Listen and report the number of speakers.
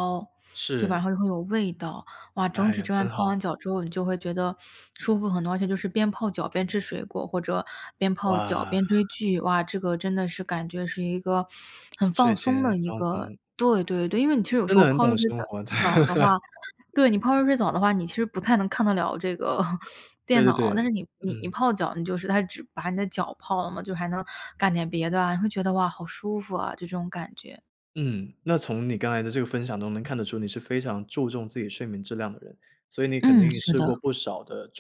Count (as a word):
two